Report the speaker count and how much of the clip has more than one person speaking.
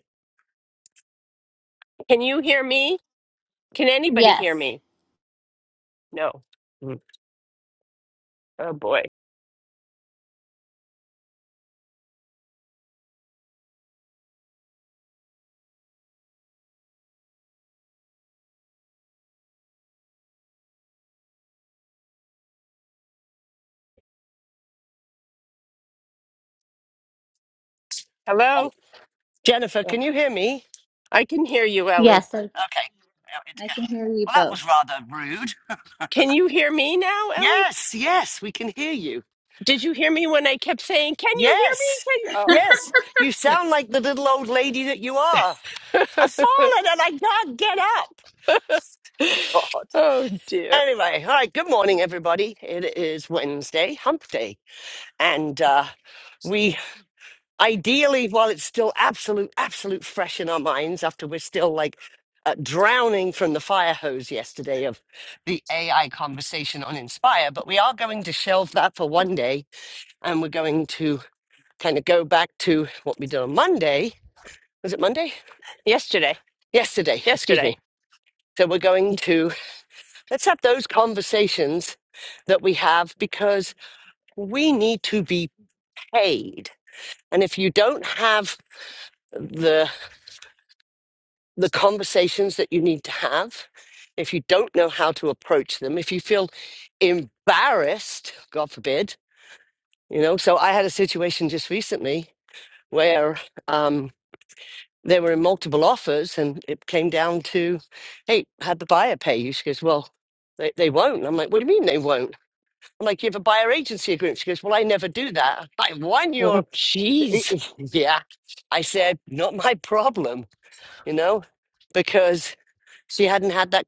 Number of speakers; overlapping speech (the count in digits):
3, about 2%